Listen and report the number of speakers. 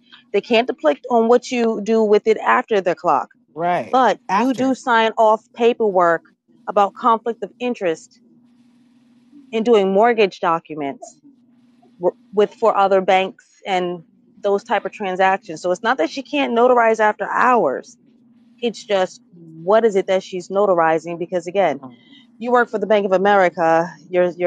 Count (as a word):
two